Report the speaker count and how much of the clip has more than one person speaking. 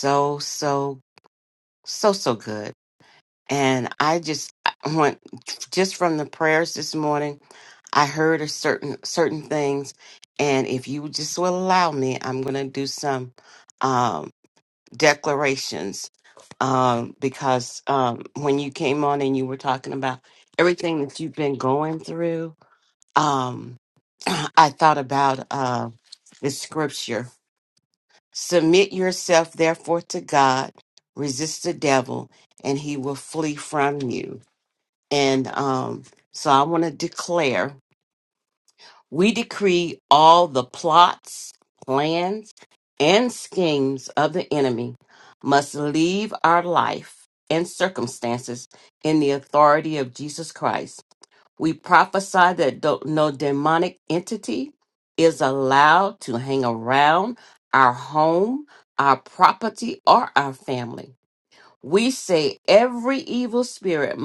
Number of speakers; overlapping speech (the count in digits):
1, no overlap